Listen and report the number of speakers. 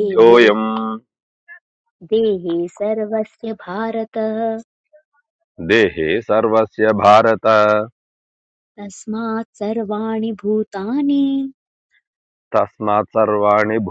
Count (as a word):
two